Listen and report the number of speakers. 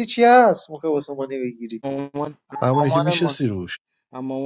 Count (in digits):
3